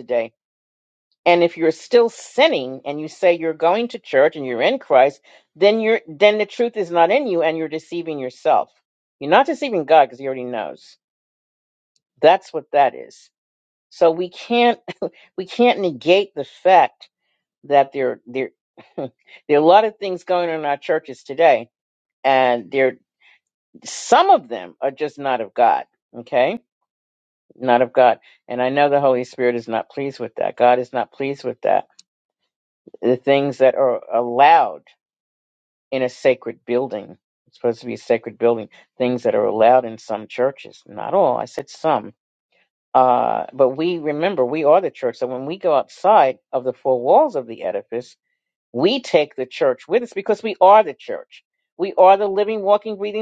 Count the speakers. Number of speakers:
1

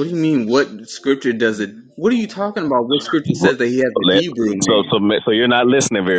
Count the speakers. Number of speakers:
2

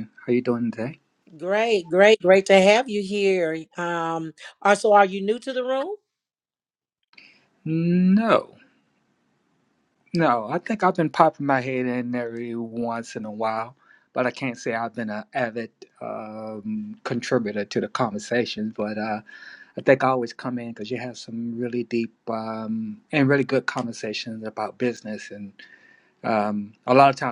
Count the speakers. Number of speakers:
2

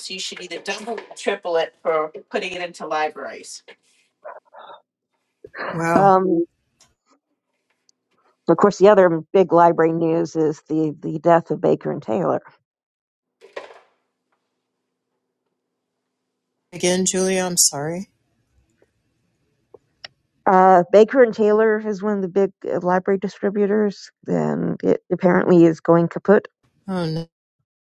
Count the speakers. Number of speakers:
3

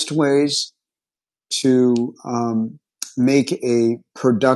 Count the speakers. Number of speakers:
1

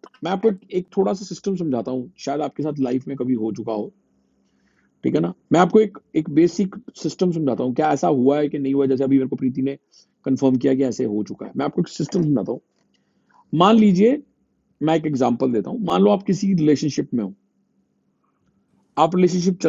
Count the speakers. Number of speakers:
1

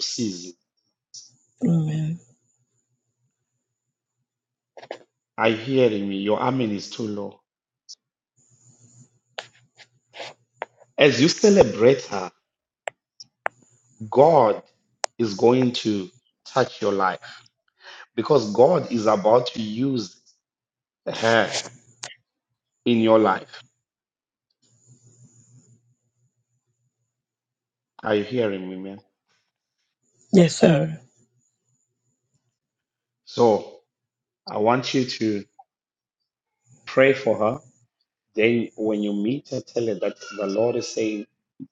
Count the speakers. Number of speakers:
2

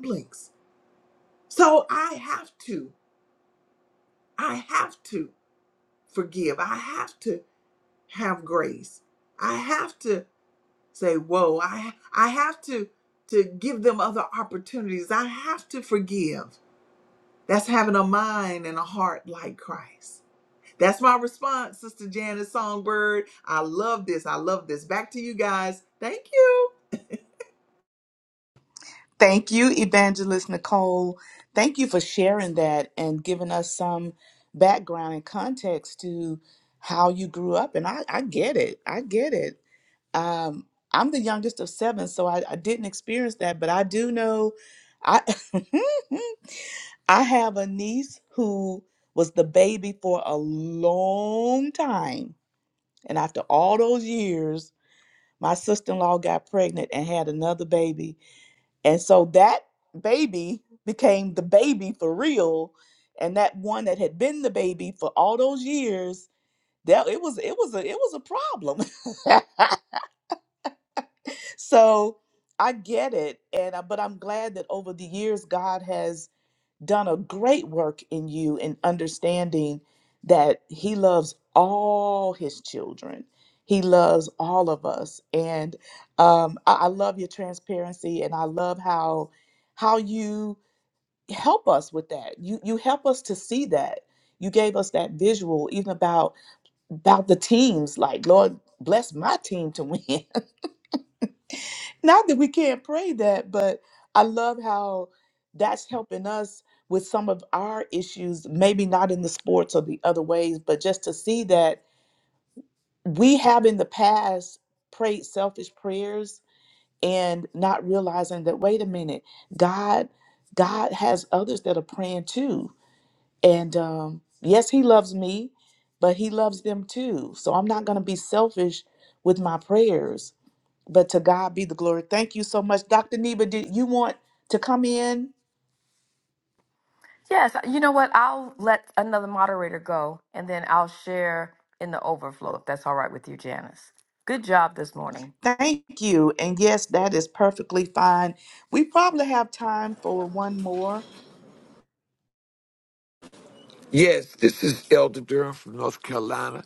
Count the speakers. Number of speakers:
4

